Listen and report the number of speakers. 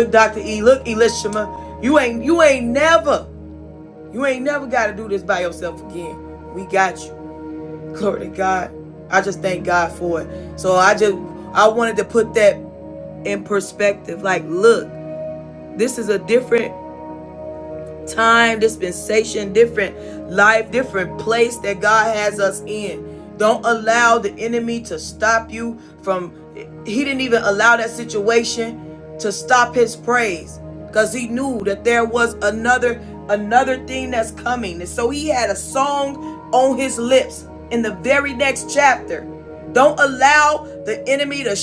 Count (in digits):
1